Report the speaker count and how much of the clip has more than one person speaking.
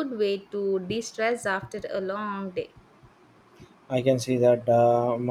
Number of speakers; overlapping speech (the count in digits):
2, no overlap